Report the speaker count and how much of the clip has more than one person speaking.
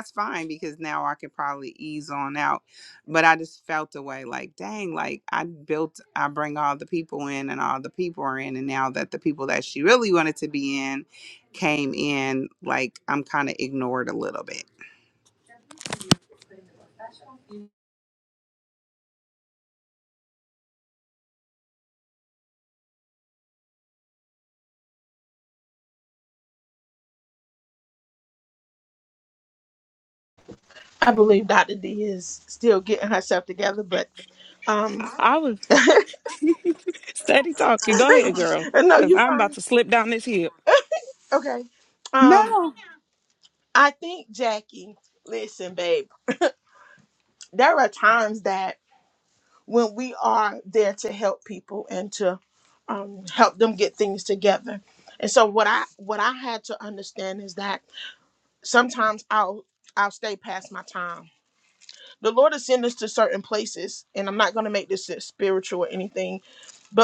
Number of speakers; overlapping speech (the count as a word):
three, about 2%